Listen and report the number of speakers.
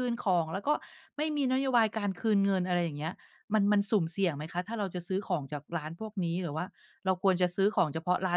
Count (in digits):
1